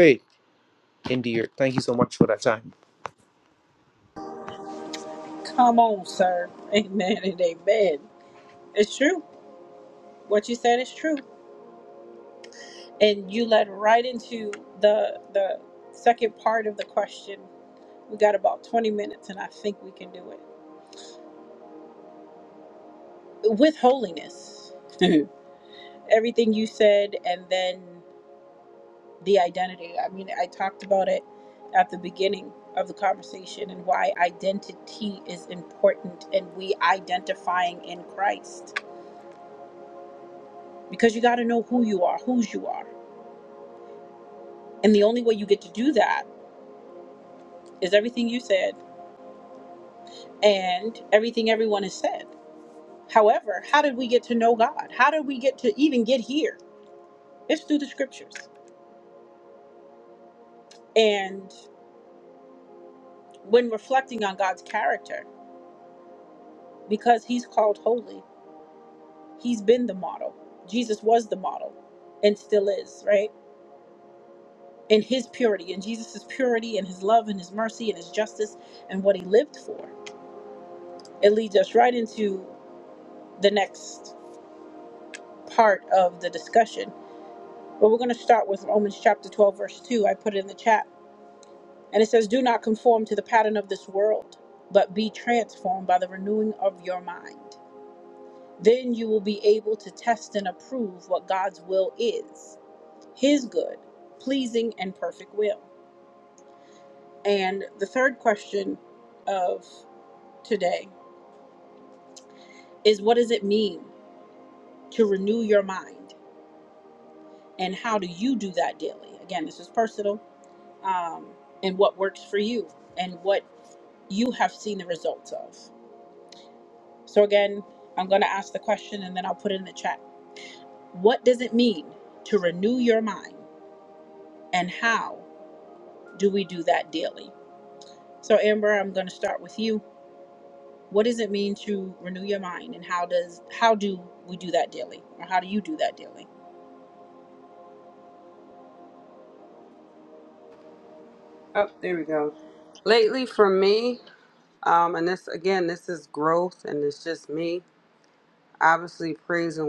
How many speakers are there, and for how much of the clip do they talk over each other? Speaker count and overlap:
3, no overlap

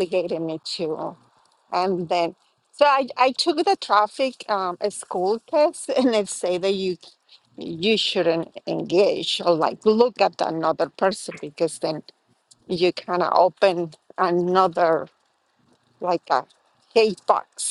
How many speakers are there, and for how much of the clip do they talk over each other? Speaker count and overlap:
1, no overlap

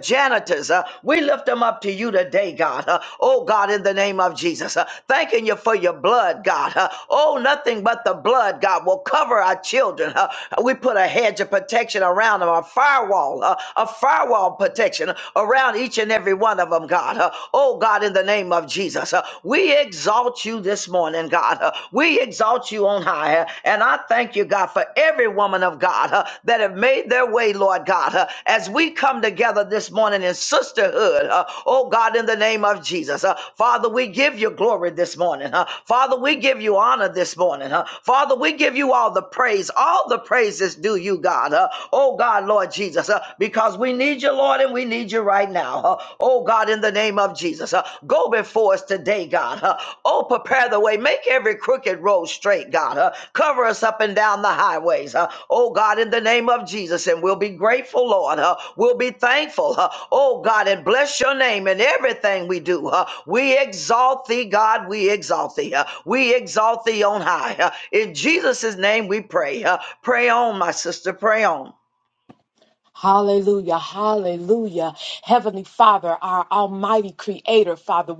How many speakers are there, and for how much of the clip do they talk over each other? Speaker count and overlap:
2, no overlap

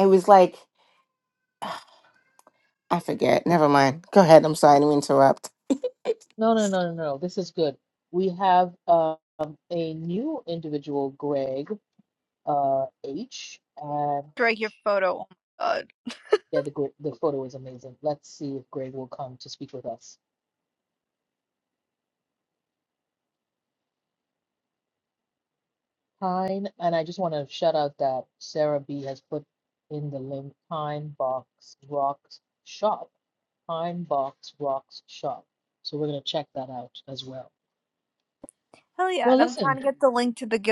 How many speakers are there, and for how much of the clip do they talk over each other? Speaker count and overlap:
3, about 1%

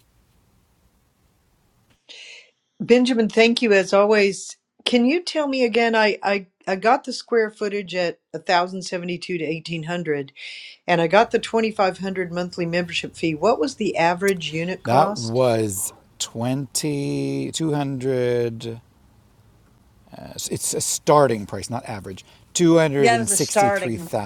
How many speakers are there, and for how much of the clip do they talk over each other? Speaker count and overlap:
3, about 4%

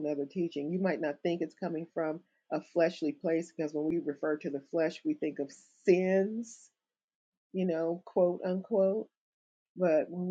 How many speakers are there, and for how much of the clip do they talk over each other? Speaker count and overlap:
1, no overlap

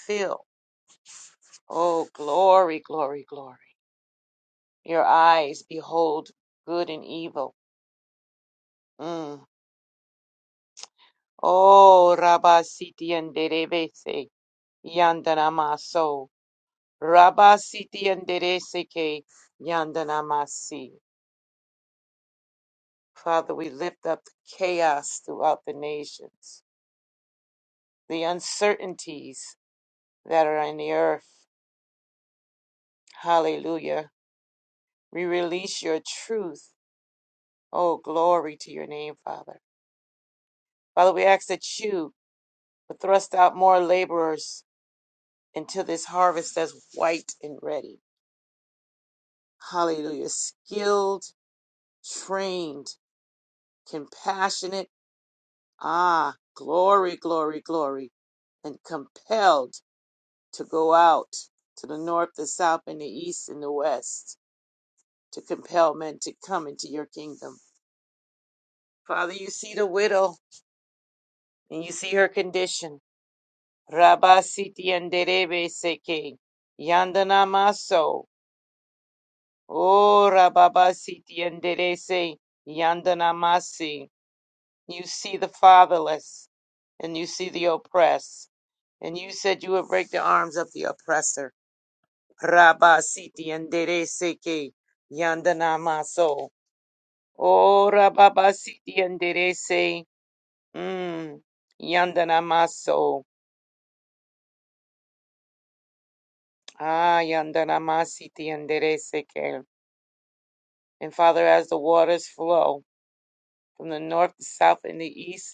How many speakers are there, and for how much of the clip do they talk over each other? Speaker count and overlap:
1, no overlap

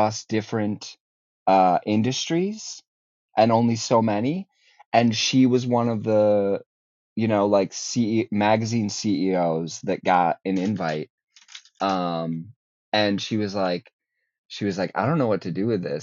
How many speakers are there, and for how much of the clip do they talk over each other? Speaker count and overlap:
1, no overlap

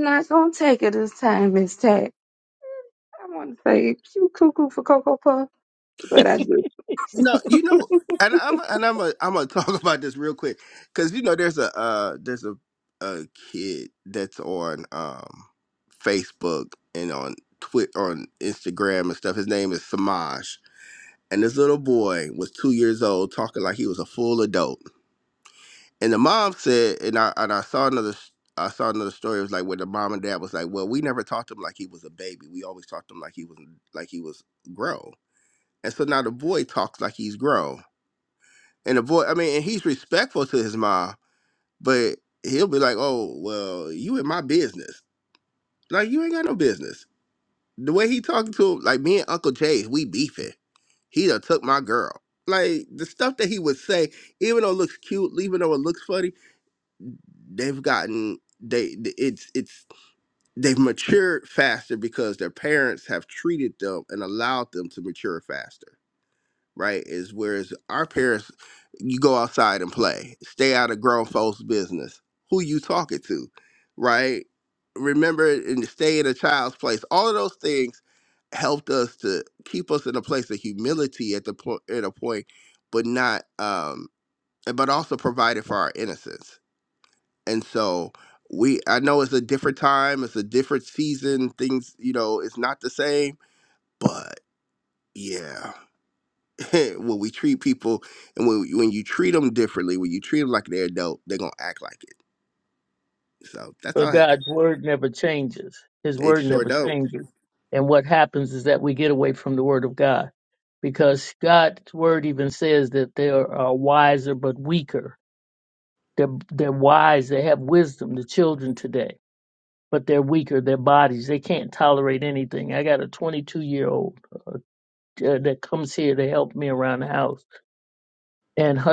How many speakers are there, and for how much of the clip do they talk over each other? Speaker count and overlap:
3, about 1%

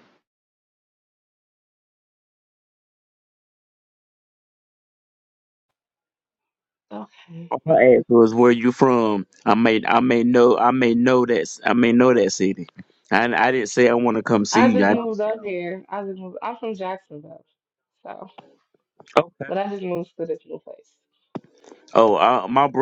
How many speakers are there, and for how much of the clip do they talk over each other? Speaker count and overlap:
2, about 2%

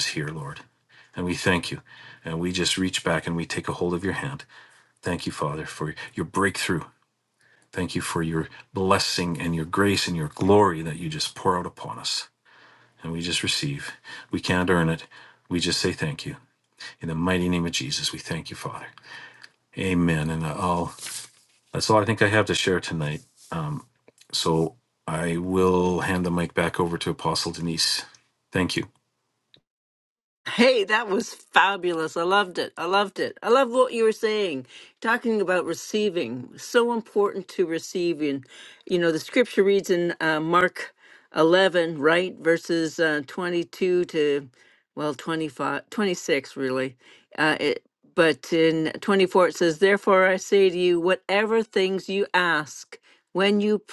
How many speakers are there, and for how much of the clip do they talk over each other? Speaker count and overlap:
2, no overlap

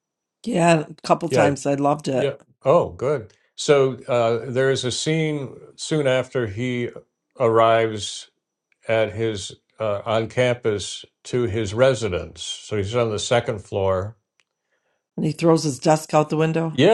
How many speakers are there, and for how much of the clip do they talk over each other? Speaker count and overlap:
2, about 2%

